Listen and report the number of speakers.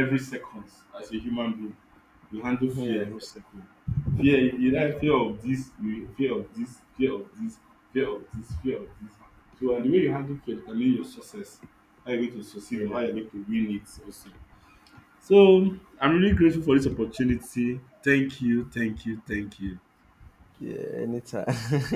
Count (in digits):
2